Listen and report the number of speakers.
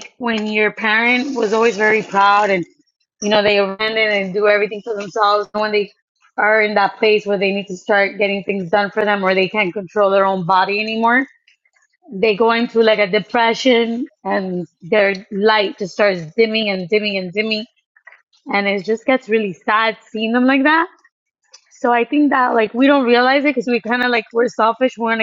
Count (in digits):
1